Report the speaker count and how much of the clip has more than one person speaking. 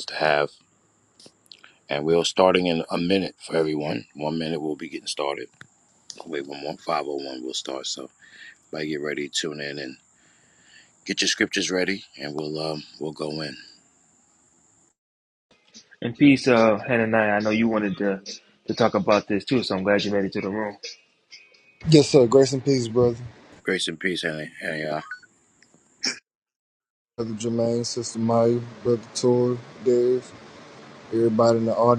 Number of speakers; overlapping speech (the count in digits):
3, no overlap